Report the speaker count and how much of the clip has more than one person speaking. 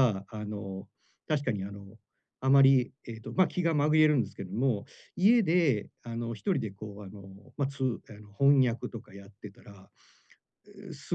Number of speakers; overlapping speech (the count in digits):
1, no overlap